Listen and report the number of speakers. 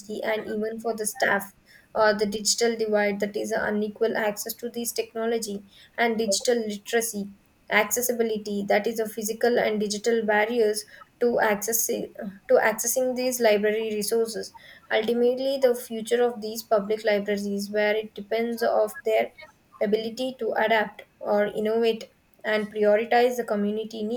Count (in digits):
1